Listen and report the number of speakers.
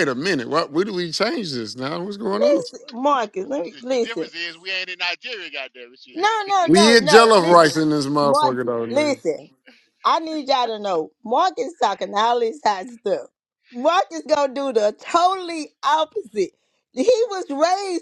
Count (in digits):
3